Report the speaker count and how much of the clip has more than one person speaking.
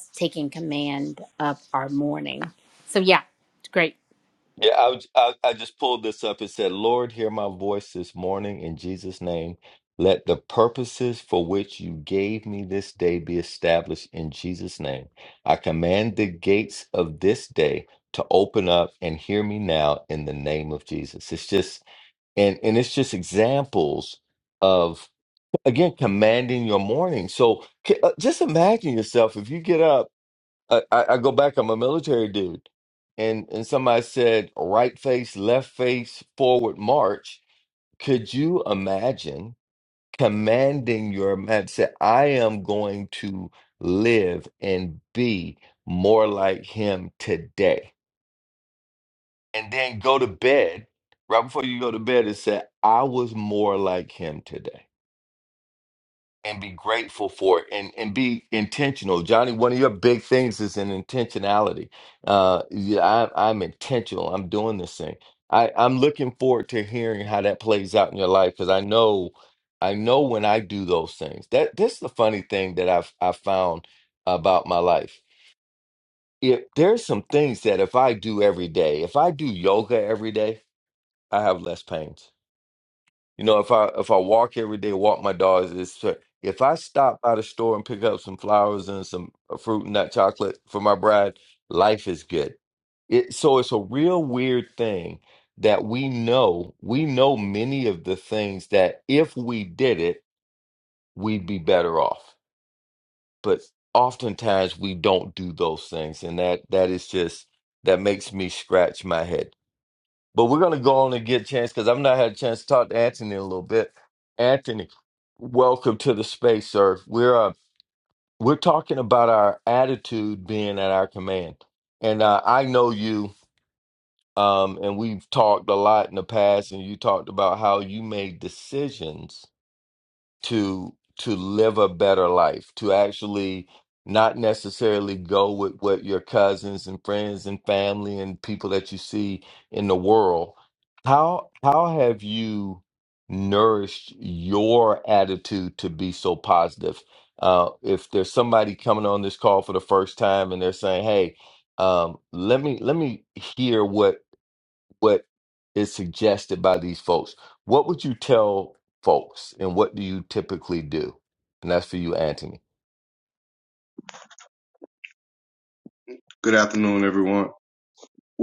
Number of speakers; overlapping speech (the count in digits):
3, no overlap